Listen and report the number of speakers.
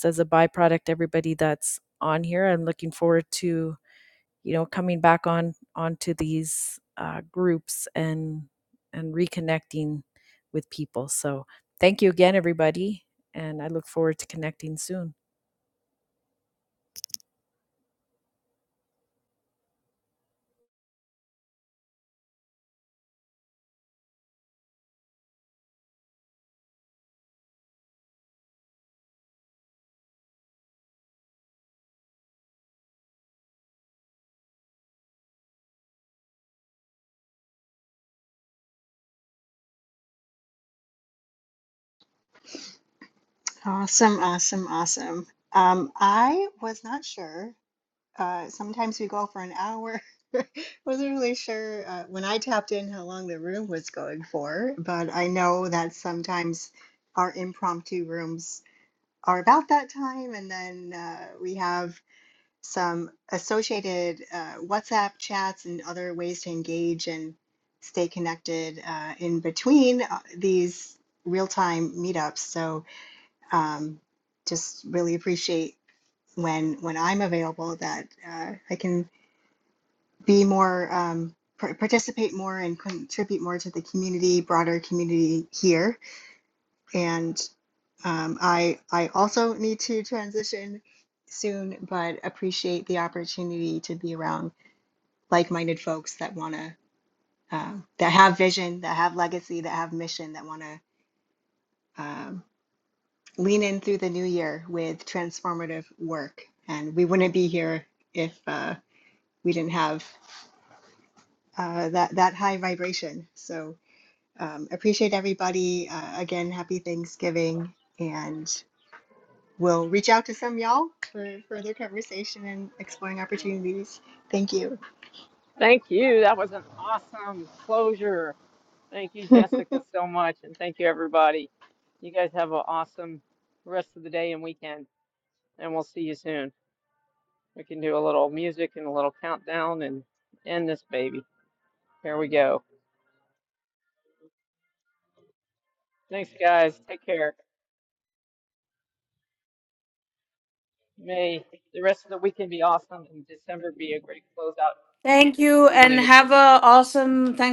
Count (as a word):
four